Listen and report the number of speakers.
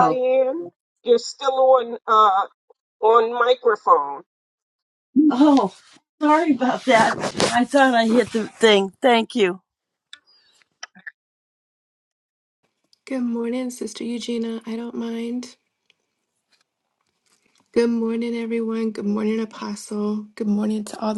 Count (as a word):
three